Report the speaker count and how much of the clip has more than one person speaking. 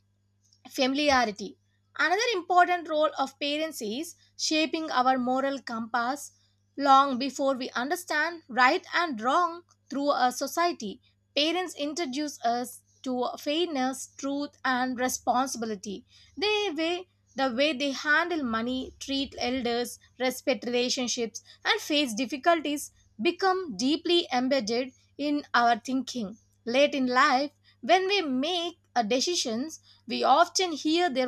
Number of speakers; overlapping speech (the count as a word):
one, no overlap